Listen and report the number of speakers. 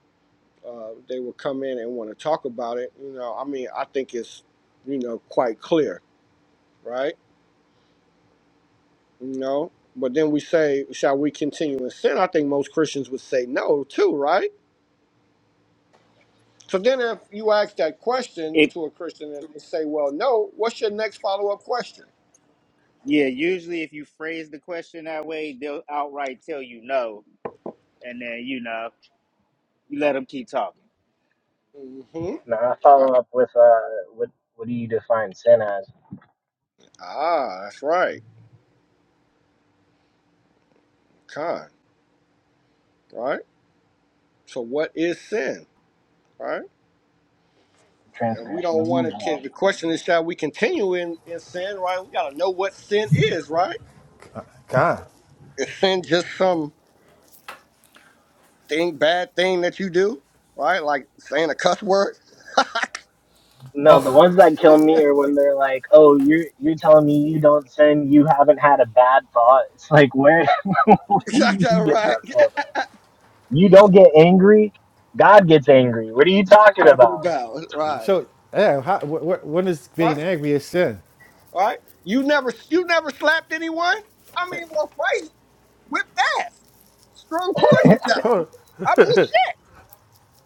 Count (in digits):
4